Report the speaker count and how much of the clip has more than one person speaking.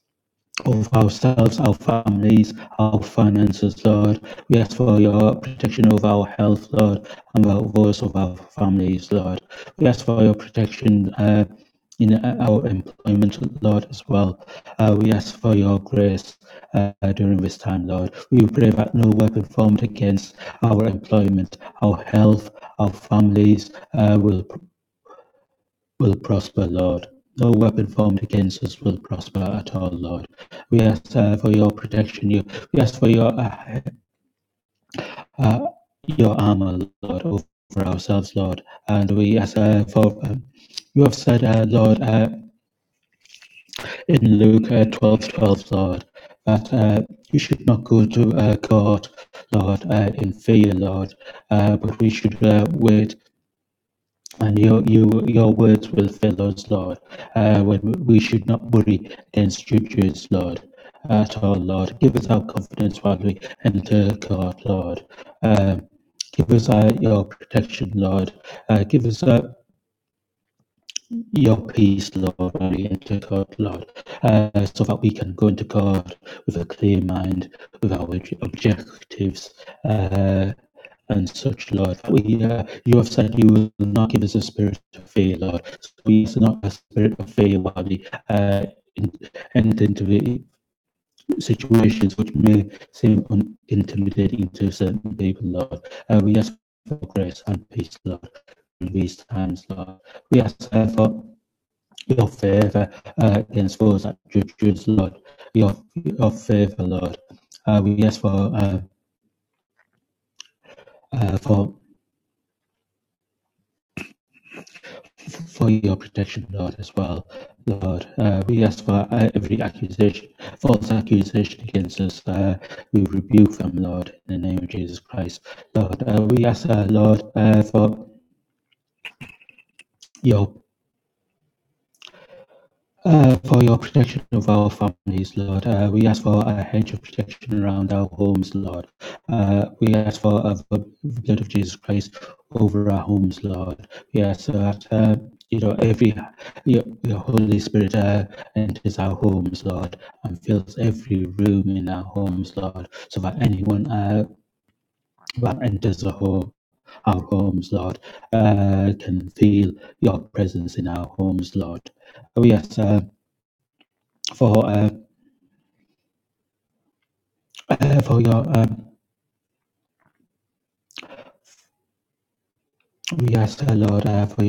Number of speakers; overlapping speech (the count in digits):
1, no overlap